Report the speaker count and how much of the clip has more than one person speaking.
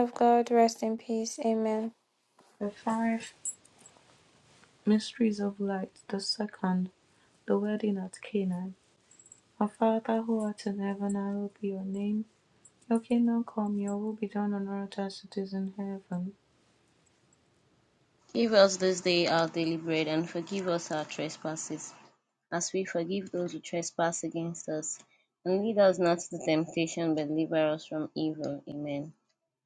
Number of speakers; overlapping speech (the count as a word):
three, no overlap